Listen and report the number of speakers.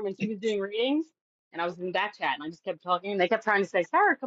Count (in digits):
1